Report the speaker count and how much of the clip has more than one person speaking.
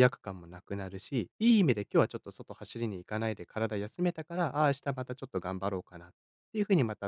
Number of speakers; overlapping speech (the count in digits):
1, no overlap